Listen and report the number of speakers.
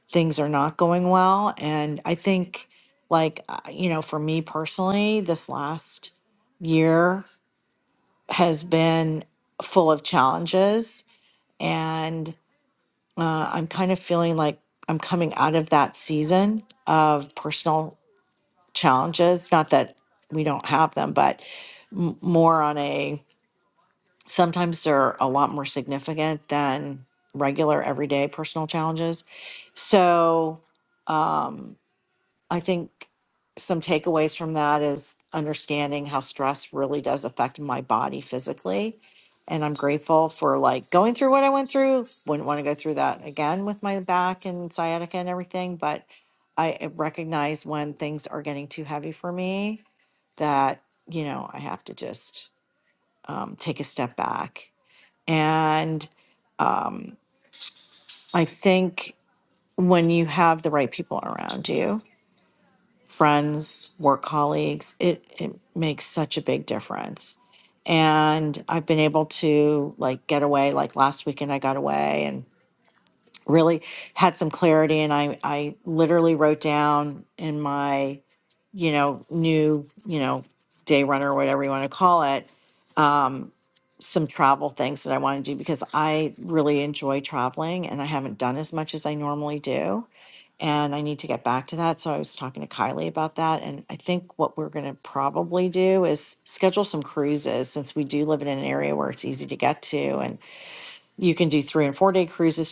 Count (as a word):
one